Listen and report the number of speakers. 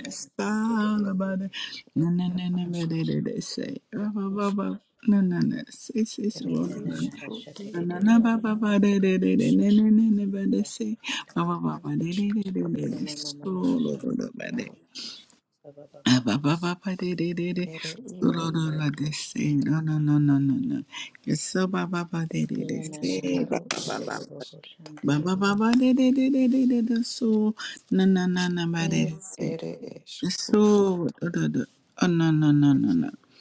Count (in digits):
3